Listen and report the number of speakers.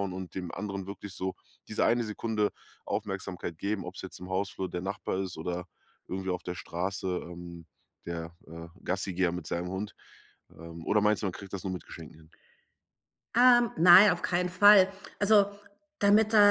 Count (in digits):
2